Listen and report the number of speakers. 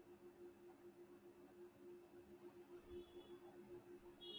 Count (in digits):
0